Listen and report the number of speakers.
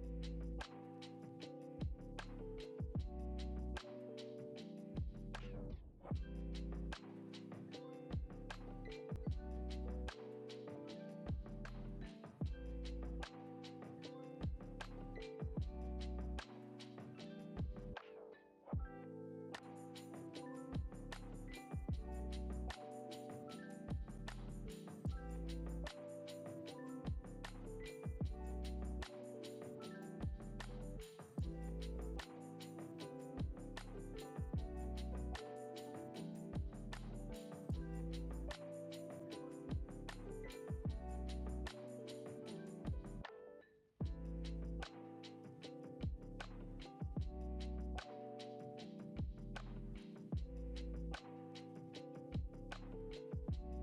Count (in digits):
0